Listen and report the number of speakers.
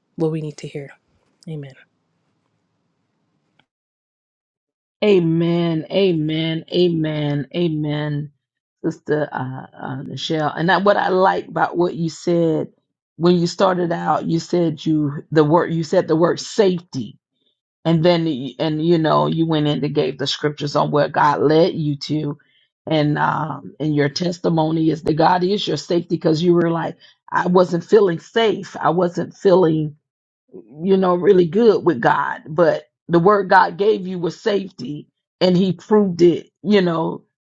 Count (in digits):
2